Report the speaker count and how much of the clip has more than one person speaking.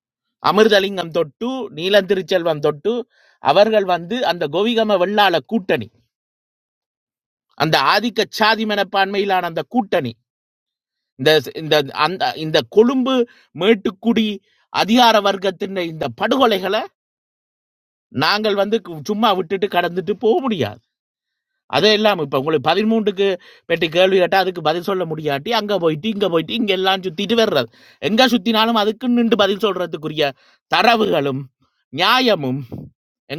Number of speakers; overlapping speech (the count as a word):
one, no overlap